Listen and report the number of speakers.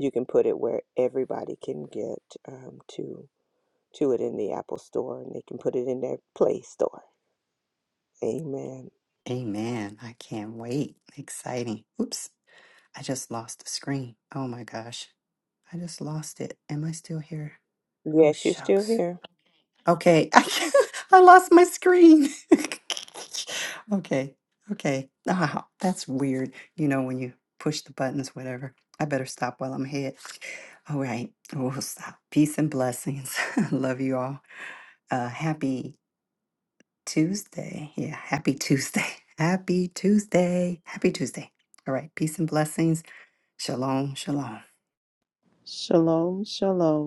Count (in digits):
3